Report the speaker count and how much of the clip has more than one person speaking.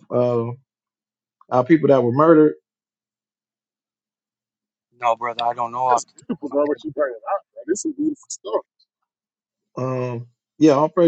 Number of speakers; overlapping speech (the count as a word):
three, about 4%